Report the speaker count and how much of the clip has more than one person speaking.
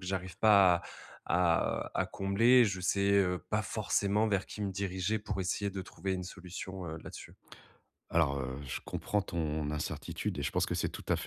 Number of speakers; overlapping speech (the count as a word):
two, no overlap